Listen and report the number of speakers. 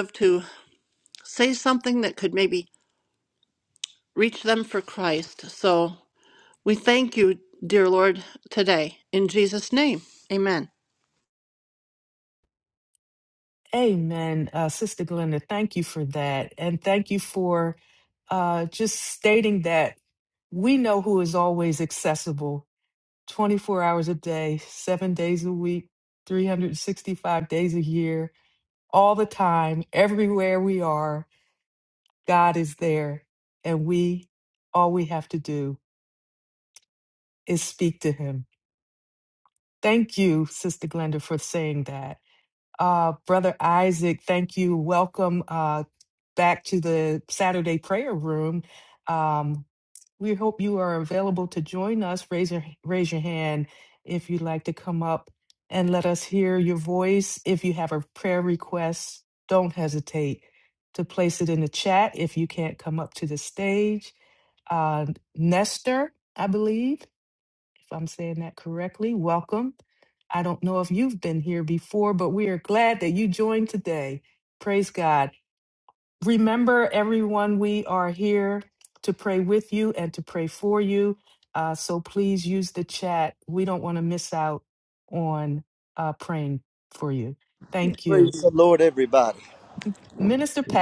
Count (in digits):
3